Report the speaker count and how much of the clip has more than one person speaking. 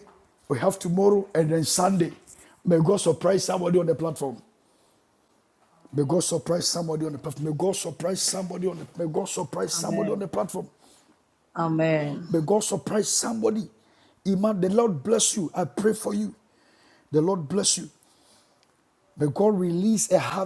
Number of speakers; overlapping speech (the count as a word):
two, about 2%